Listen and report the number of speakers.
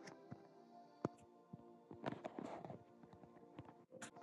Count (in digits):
0